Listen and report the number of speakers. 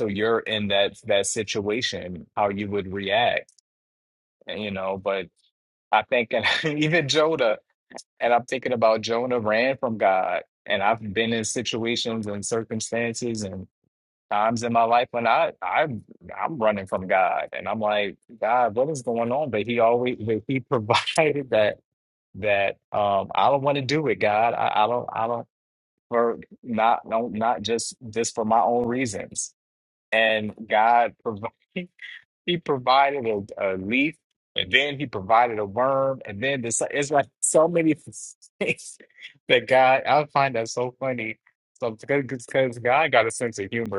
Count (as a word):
one